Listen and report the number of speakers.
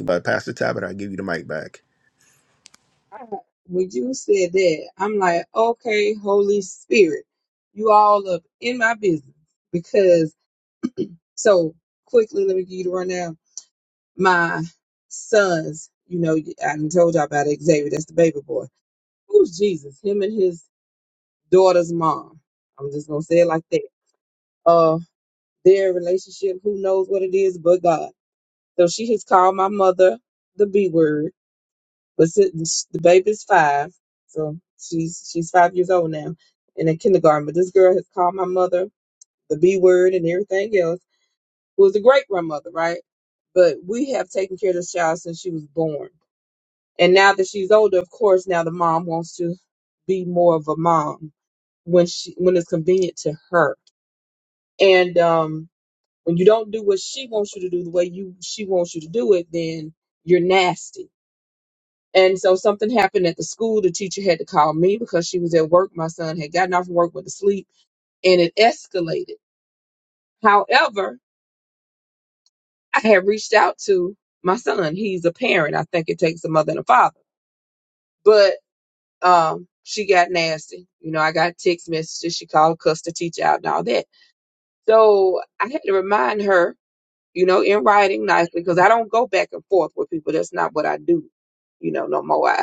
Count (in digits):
2